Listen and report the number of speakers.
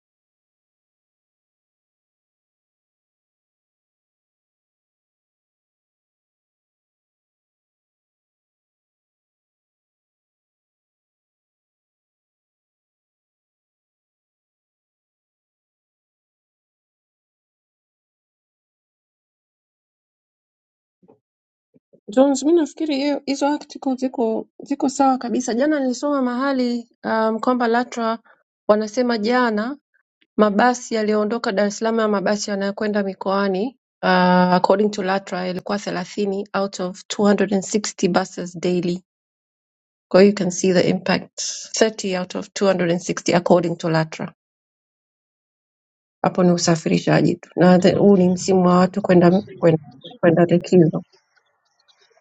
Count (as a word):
one